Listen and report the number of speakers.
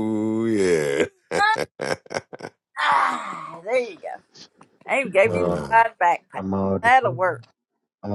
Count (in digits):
3